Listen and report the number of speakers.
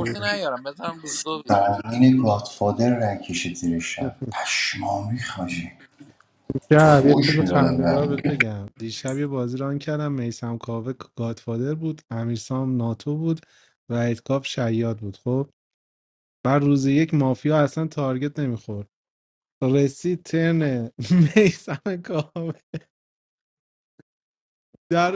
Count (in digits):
3